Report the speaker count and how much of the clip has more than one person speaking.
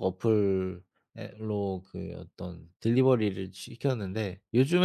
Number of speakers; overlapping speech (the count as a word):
one, no overlap